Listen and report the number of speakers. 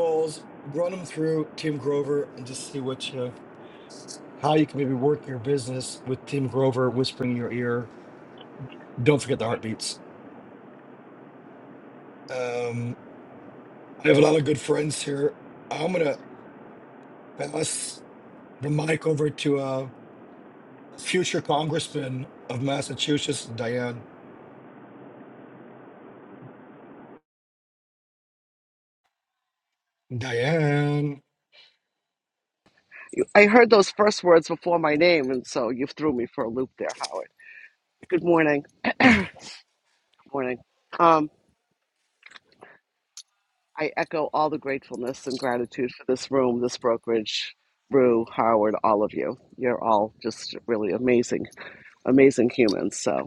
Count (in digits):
2